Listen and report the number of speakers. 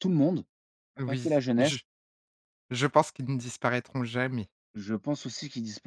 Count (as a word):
two